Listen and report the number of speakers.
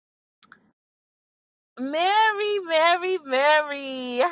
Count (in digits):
1